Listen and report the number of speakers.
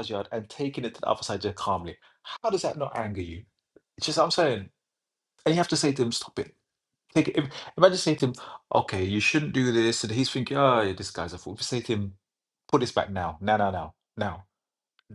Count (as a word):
one